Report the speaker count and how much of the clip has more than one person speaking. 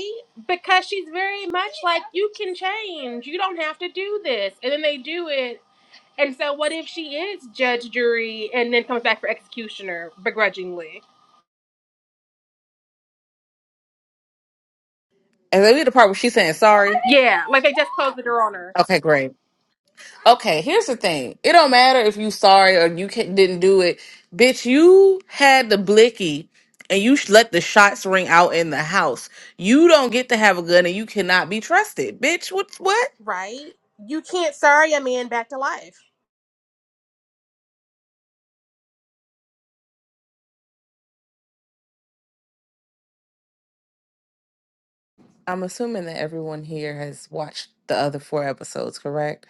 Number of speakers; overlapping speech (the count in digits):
2, no overlap